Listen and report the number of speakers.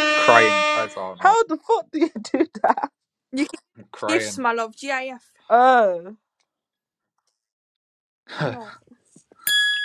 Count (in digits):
3